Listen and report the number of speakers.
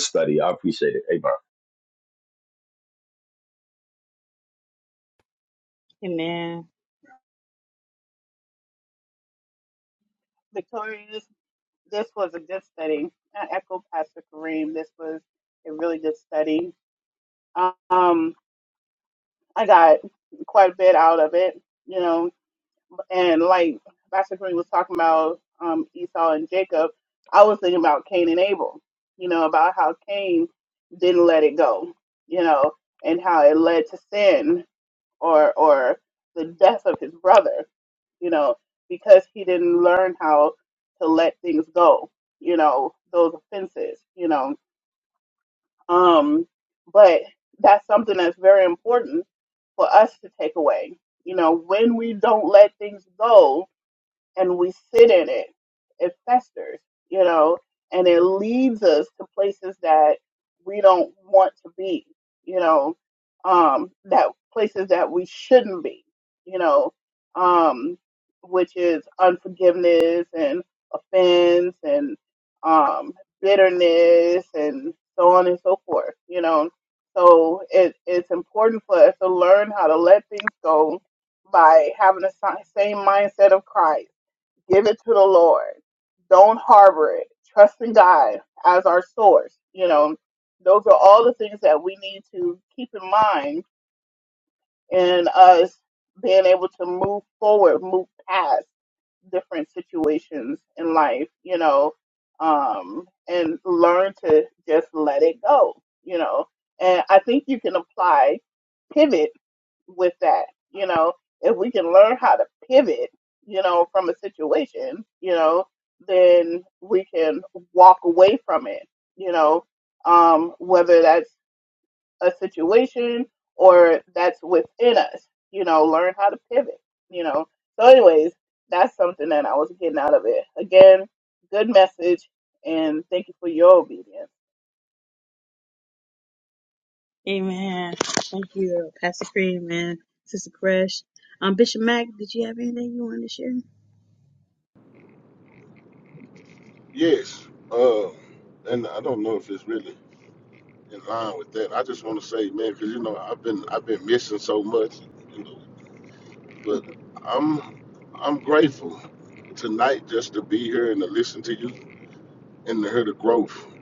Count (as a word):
four